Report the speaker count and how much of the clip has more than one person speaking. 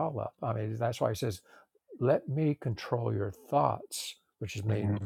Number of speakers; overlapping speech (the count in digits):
1, no overlap